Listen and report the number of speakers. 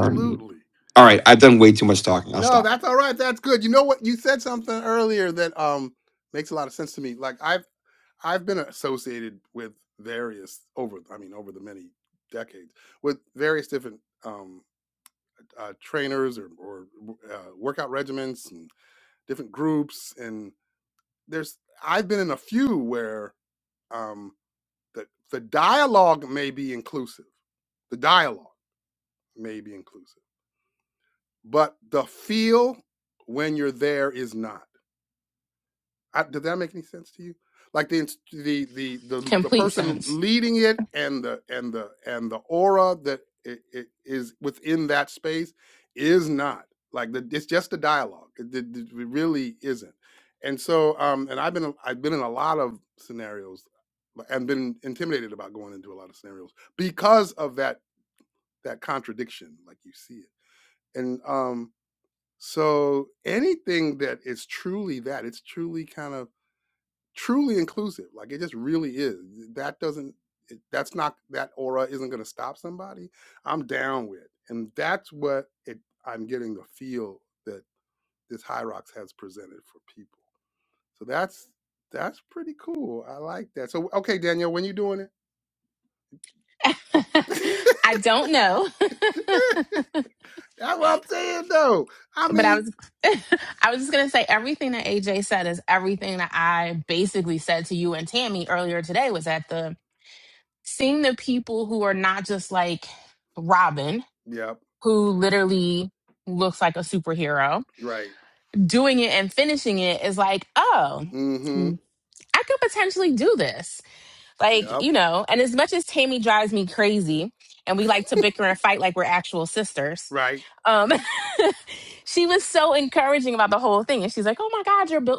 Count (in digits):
3